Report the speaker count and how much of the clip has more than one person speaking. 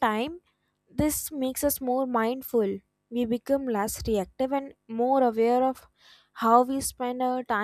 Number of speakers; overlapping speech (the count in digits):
1, no overlap